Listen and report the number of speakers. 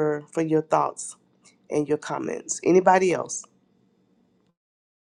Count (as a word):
one